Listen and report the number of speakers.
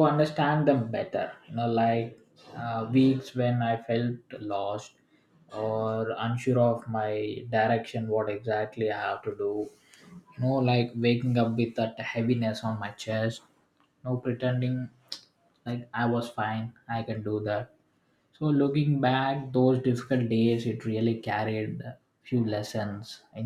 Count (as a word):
one